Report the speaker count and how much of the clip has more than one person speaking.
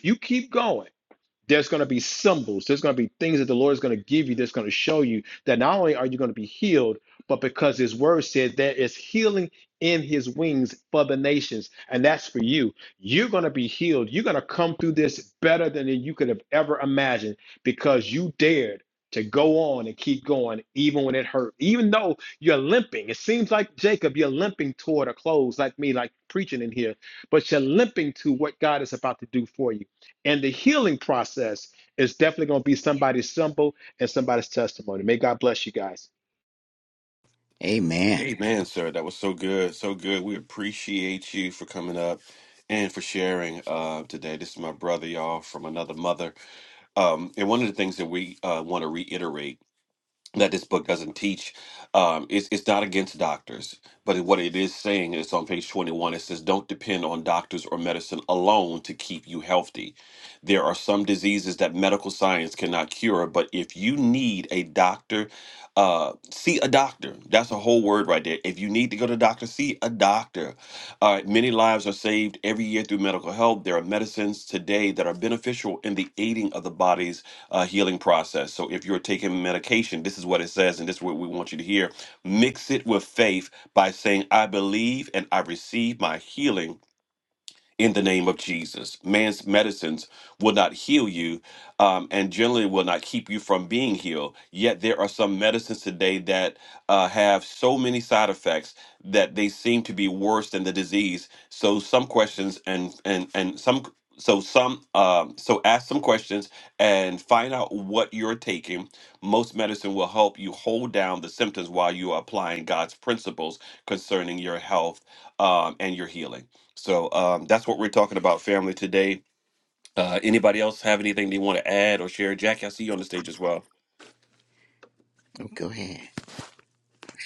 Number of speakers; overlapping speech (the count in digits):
3, under 1%